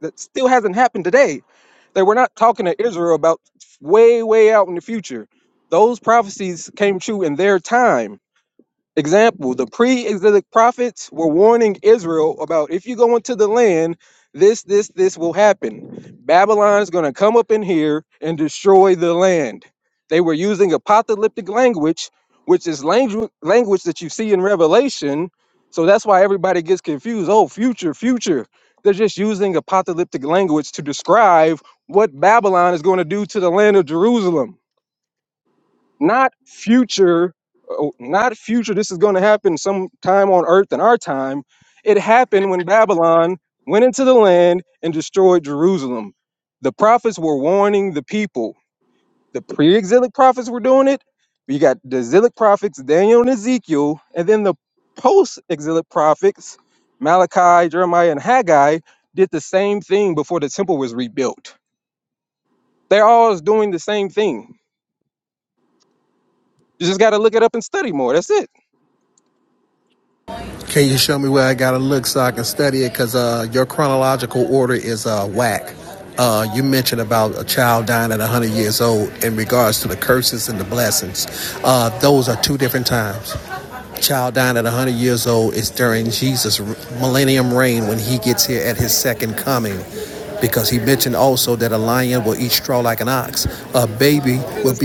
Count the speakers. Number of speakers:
2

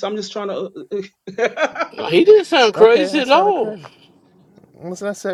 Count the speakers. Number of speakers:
3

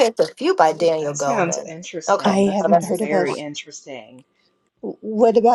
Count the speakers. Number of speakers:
3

